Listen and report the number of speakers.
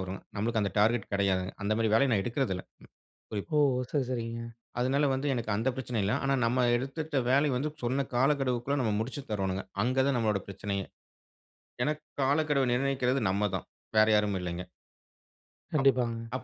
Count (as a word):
two